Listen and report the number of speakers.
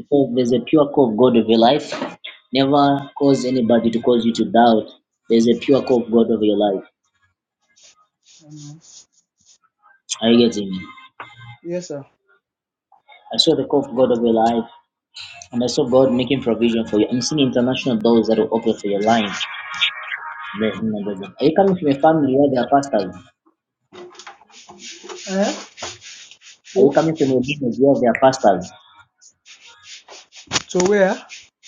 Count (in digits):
2